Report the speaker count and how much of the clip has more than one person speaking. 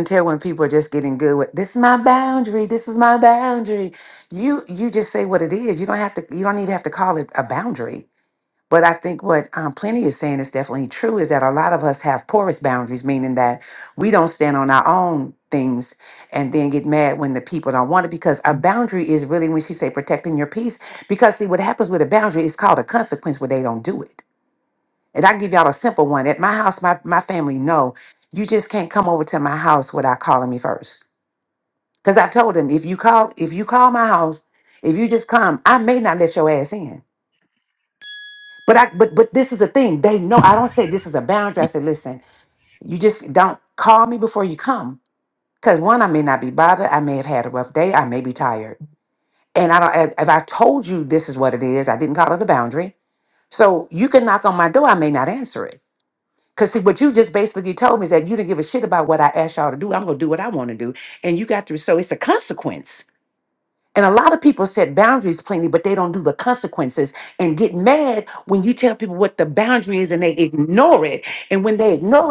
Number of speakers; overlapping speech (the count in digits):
1, no overlap